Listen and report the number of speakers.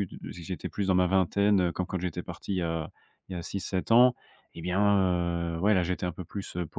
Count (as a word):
one